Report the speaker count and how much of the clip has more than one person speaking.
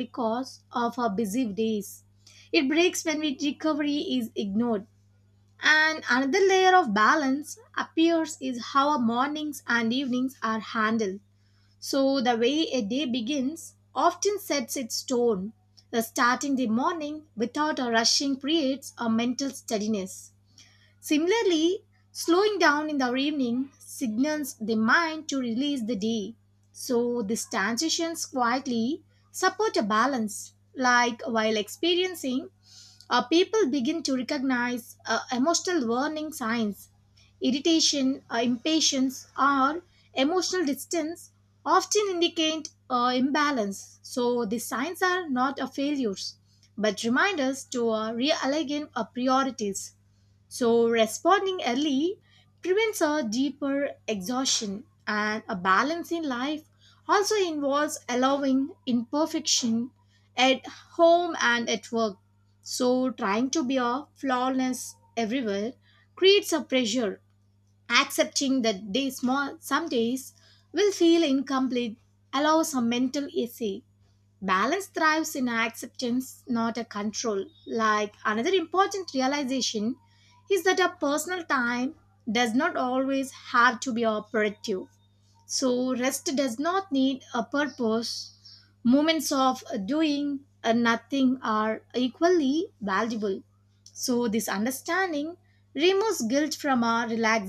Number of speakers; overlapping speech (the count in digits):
1, no overlap